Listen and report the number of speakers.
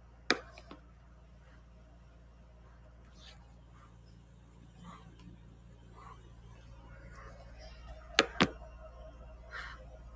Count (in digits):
0